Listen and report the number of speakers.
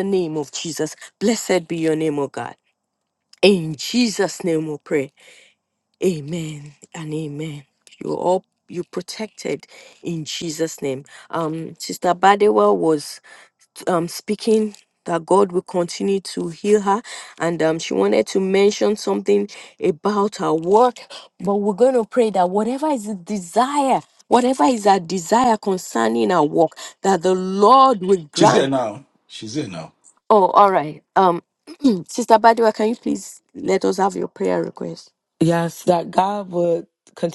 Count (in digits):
3